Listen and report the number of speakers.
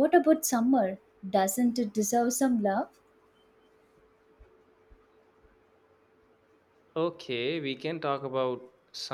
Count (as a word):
two